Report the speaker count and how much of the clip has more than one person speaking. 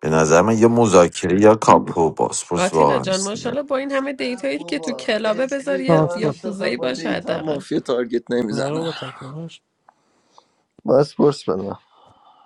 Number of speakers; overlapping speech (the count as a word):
four, about 39%